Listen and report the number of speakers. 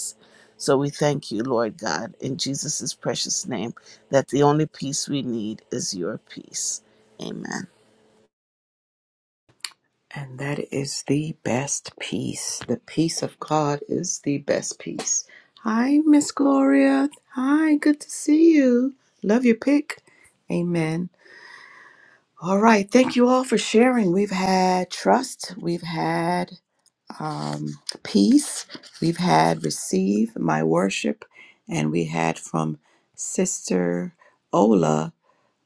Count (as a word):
two